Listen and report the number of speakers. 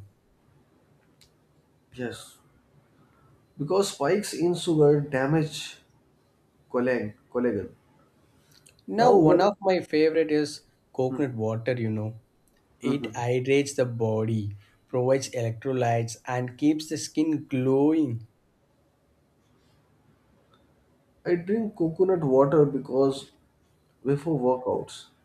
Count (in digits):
2